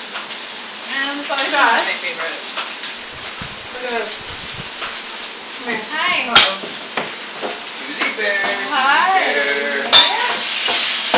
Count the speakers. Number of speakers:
3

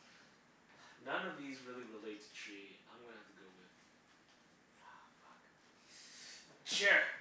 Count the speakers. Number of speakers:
1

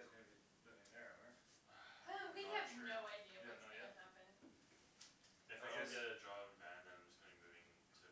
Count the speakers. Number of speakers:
3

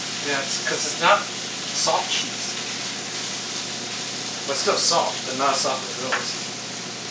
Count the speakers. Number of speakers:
1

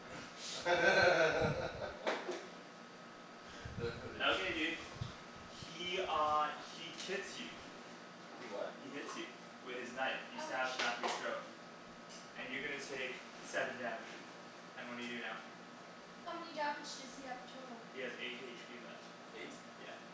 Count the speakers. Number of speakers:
3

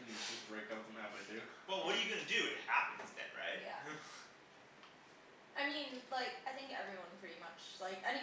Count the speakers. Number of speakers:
3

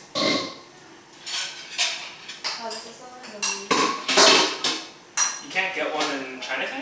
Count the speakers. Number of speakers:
2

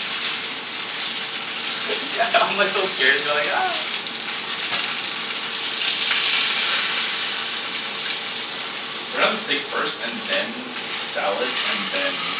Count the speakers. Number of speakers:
2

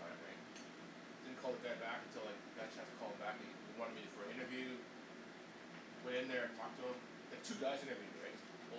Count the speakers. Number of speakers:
1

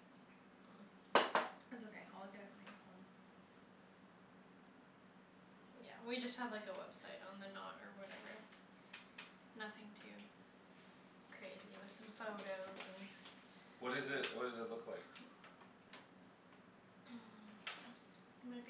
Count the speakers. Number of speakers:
3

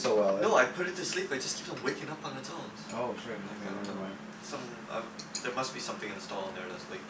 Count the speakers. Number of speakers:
2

